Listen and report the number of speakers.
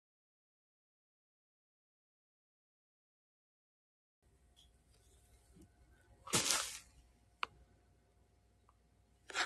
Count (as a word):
zero